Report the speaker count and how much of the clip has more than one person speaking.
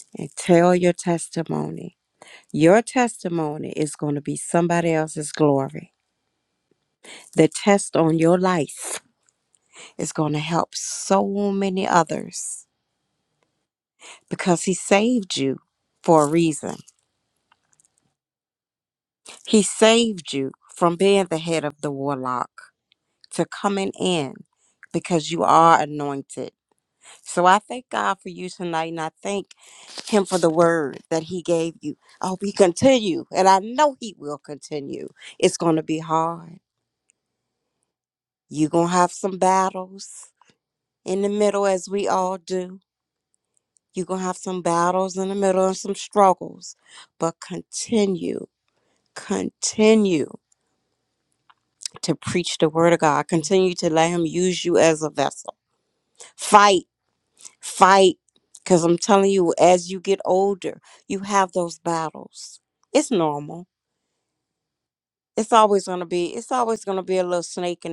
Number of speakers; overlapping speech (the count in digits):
1, no overlap